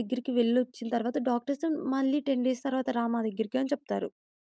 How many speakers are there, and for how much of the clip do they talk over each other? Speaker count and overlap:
one, no overlap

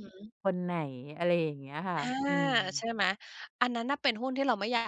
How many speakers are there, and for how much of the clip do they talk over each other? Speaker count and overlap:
two, about 3%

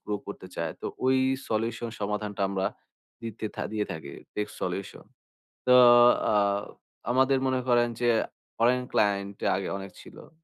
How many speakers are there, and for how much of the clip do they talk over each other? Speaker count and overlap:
one, no overlap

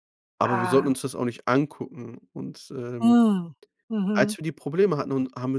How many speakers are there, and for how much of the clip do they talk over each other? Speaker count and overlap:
two, about 15%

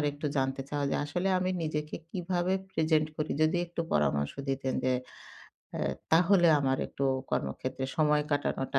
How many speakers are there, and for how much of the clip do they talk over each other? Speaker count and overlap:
one, no overlap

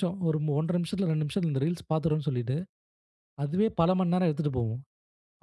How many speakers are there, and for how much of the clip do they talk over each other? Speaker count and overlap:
one, no overlap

